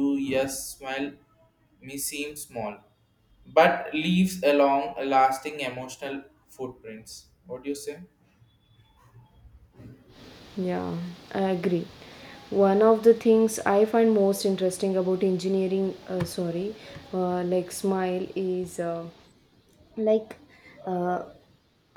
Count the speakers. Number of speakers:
2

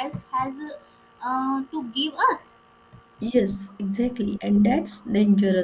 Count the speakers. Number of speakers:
2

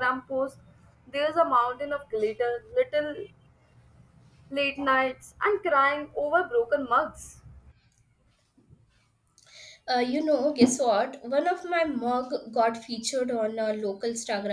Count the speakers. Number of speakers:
2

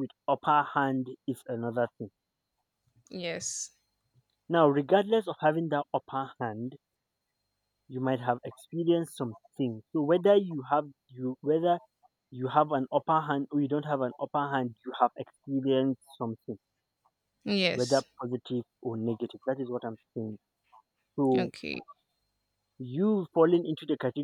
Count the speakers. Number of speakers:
2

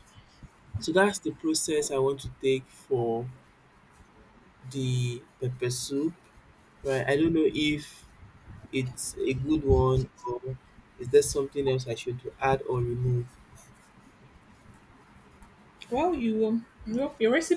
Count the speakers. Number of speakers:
2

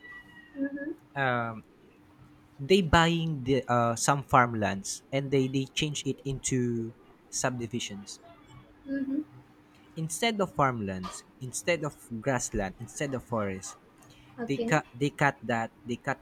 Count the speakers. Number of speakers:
2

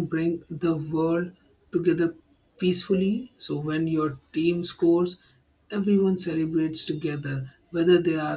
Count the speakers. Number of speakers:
1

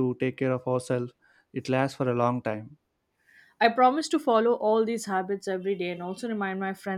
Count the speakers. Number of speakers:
2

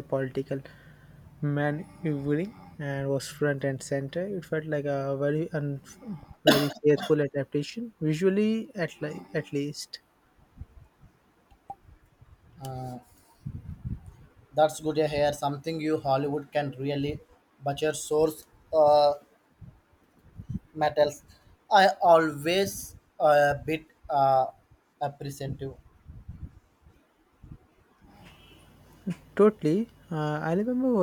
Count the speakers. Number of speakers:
2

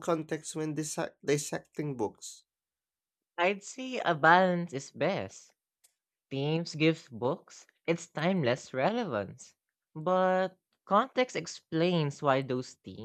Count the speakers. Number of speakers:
2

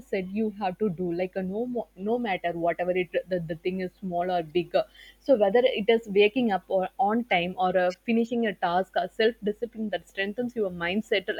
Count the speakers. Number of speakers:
1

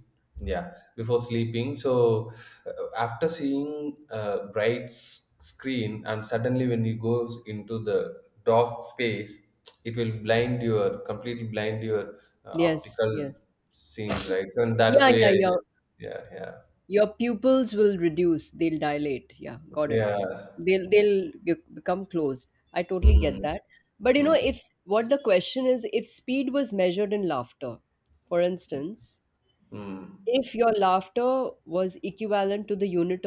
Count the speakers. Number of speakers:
2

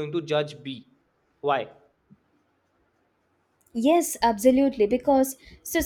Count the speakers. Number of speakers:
2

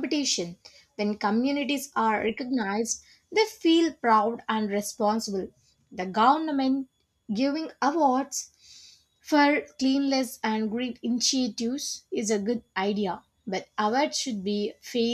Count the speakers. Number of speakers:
1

